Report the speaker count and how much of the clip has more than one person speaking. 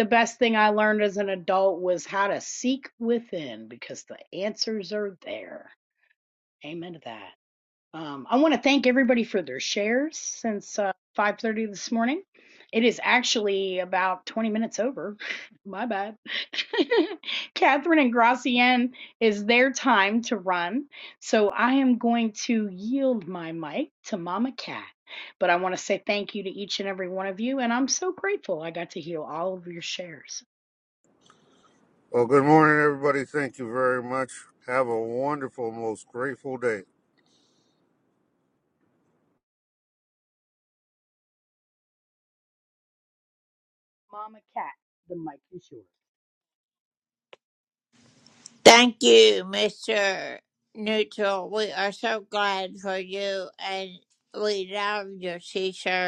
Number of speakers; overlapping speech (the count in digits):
3, no overlap